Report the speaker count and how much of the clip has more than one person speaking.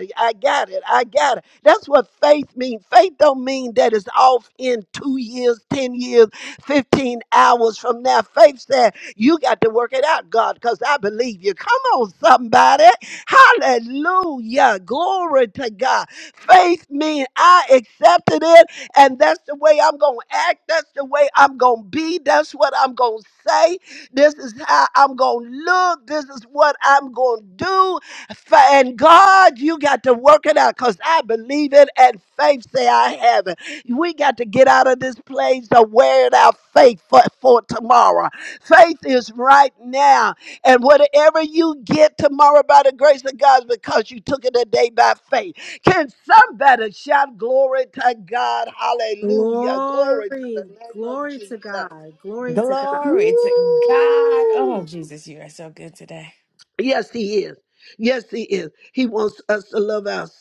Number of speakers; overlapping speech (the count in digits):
3, about 5%